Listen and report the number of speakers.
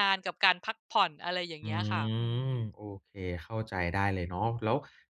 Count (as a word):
two